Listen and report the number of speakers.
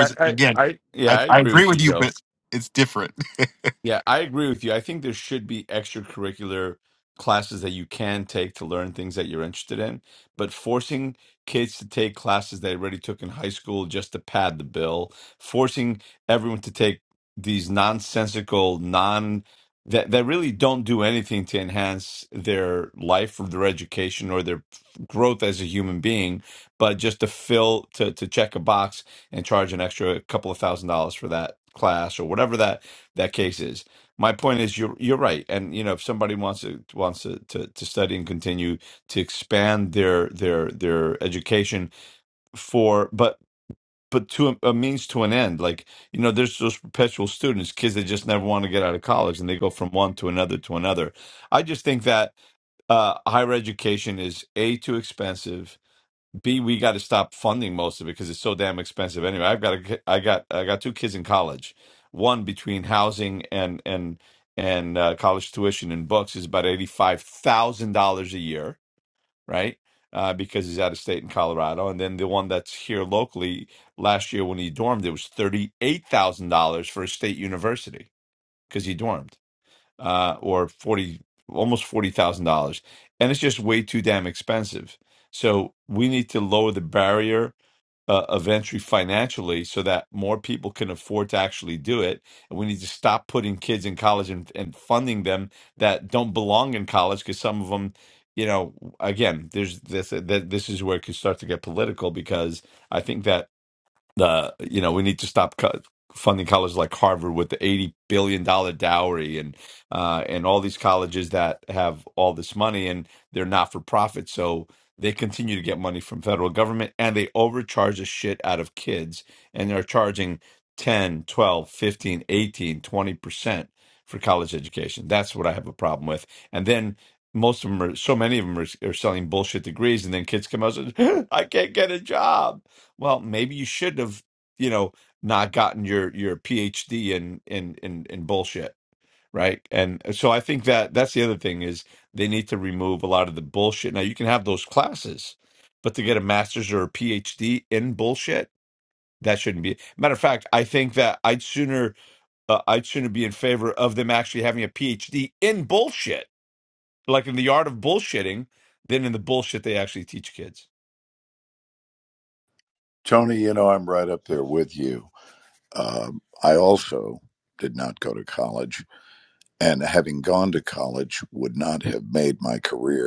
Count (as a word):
three